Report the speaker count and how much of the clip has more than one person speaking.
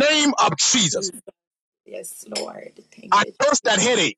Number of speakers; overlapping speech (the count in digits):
2, about 9%